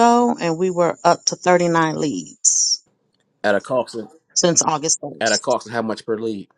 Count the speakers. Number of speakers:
two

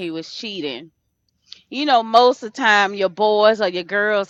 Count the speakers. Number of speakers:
one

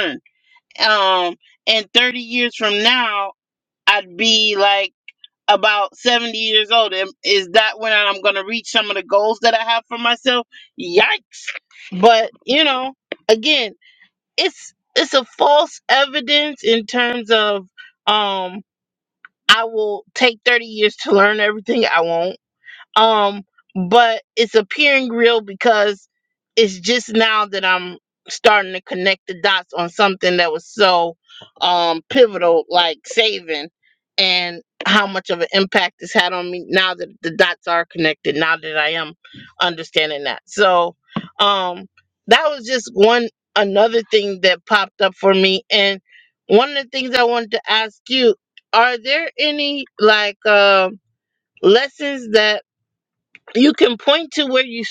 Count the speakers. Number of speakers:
one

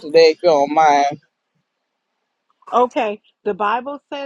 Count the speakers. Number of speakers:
two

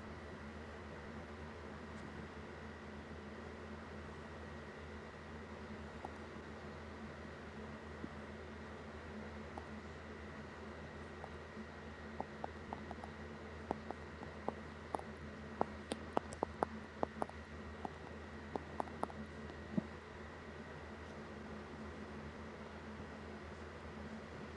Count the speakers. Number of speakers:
zero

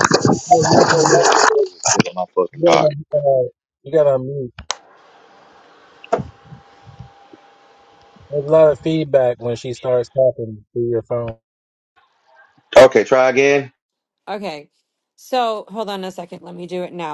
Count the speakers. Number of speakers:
three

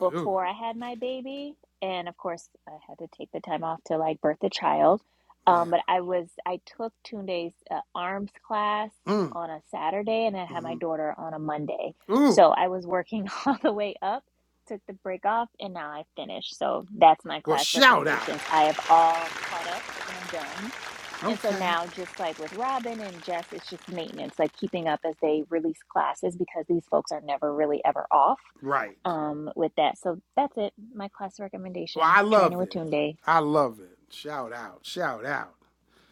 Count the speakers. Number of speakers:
two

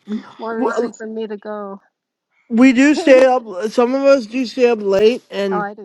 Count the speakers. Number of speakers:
two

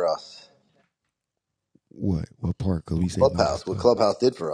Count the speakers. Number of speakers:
two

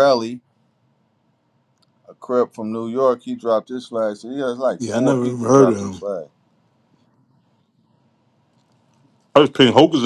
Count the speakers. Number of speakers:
two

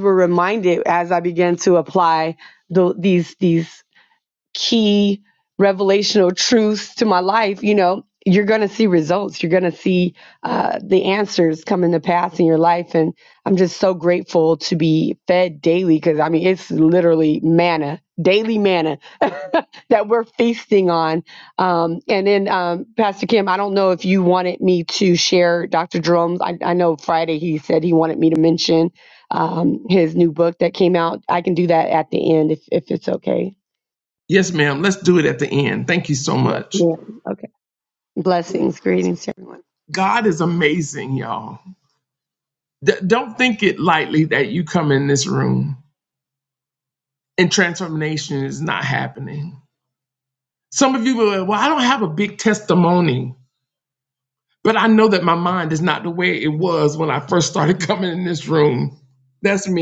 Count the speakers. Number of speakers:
two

